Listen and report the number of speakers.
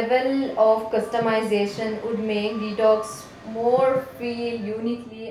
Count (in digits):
1